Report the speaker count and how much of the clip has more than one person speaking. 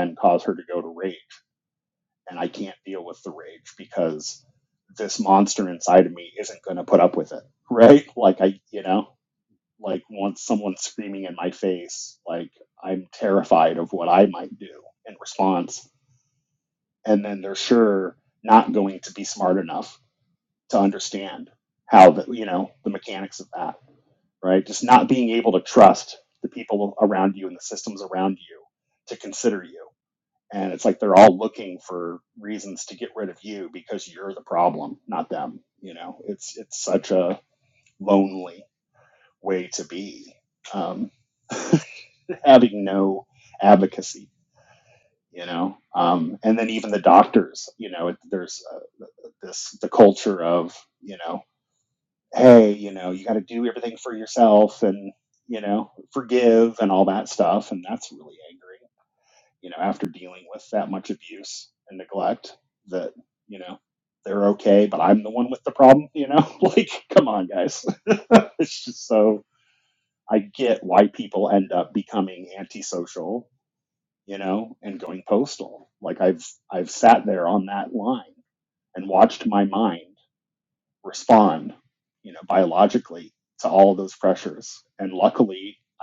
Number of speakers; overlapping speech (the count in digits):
1, no overlap